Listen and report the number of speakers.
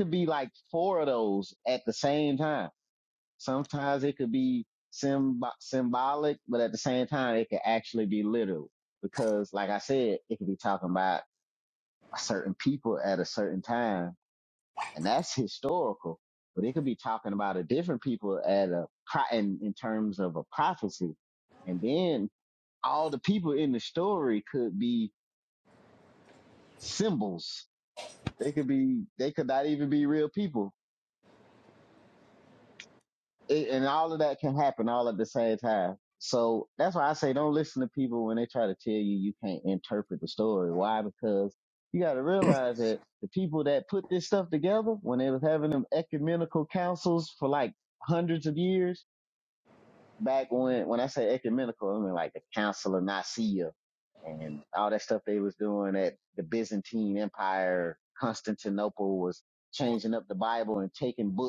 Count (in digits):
1